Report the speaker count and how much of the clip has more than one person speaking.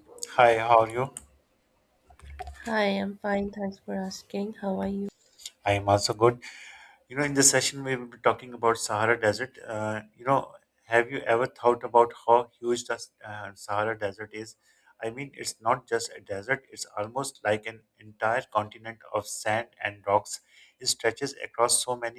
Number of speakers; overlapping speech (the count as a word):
two, no overlap